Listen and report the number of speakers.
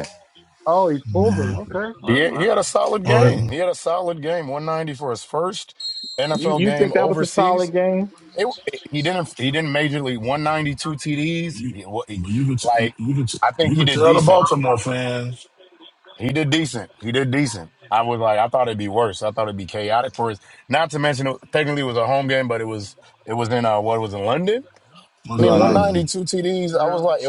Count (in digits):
4